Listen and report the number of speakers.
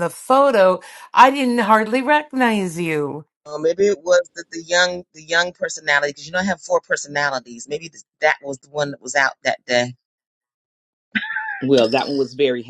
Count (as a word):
three